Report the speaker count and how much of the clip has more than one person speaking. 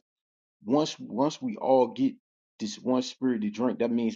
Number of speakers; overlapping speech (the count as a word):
one, no overlap